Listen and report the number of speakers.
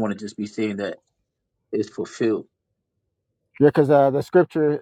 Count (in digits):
2